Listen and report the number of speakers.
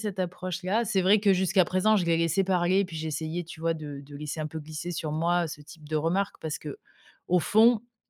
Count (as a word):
one